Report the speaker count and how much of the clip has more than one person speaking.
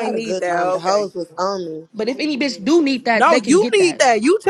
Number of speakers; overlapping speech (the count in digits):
3, about 42%